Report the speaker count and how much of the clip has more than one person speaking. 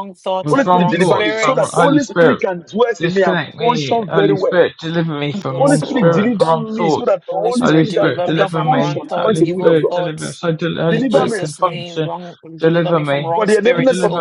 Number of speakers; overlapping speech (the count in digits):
3, about 76%